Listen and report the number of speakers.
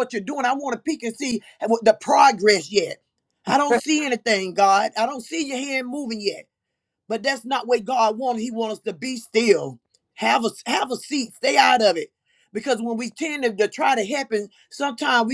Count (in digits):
1